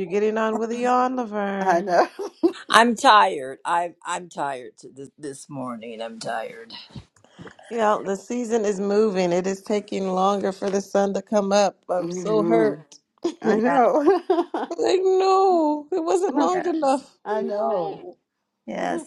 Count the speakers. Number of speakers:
three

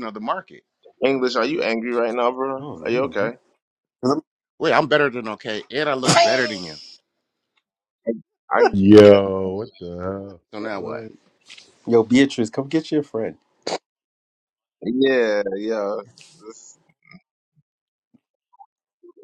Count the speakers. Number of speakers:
four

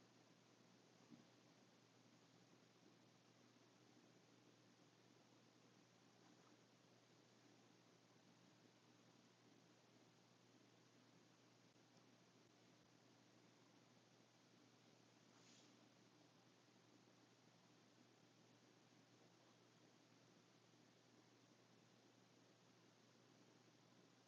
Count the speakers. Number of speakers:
zero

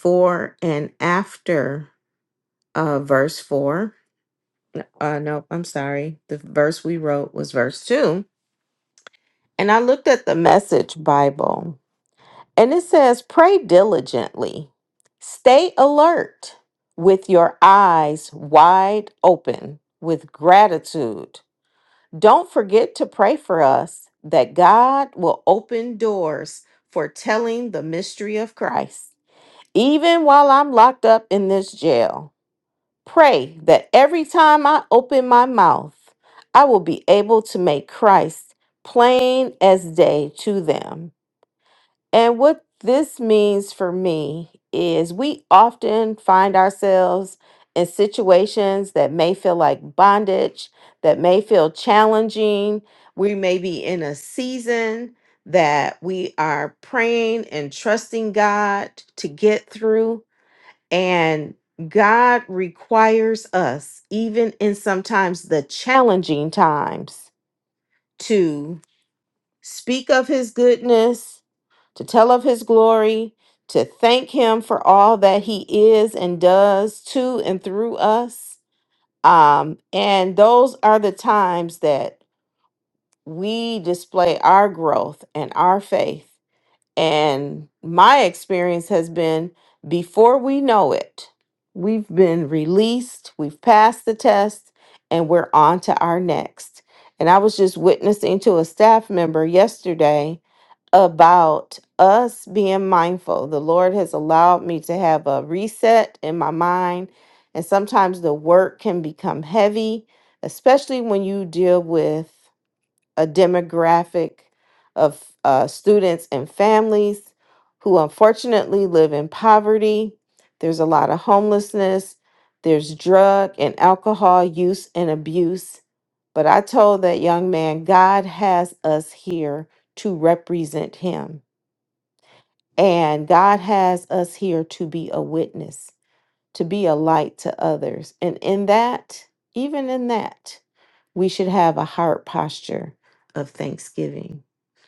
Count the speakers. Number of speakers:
one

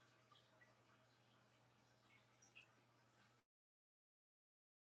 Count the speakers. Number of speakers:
zero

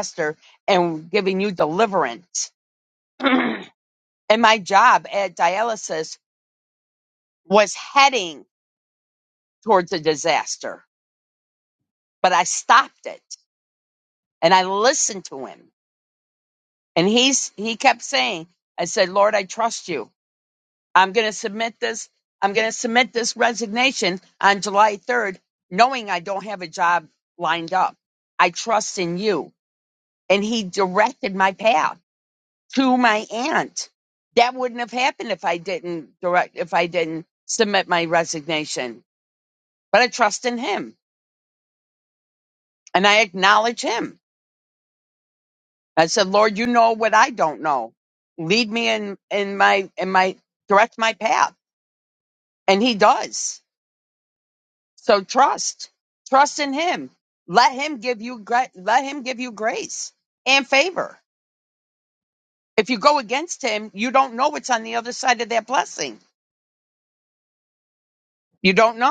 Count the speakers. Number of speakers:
one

